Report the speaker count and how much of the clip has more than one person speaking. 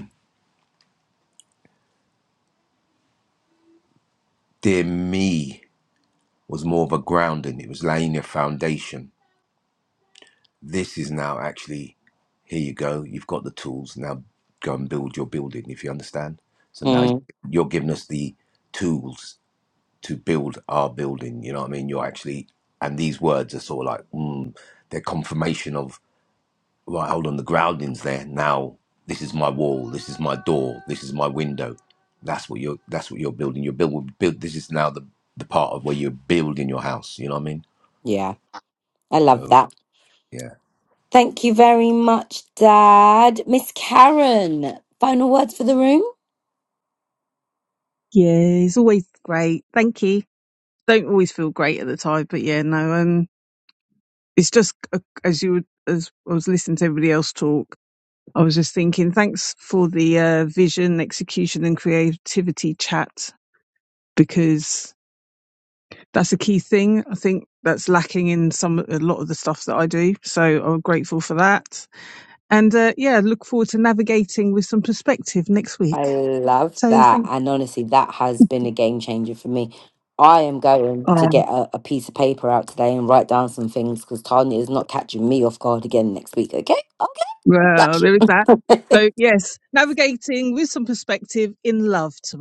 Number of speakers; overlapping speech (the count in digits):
3, about 2%